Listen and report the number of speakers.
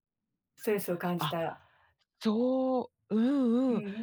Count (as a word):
two